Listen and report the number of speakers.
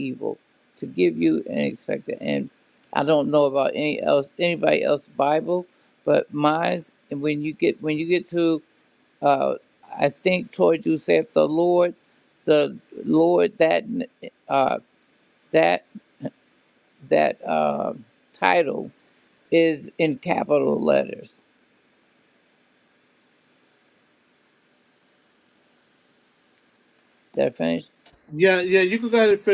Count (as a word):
two